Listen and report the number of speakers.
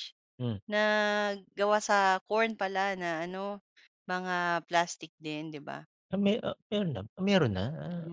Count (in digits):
2